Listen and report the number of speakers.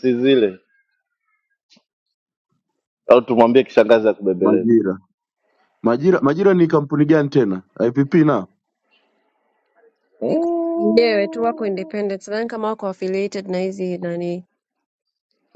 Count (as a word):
three